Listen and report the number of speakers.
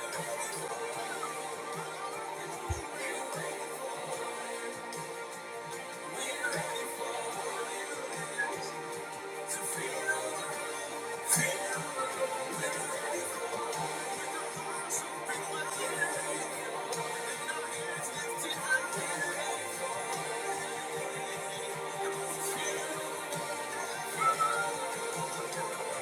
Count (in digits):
0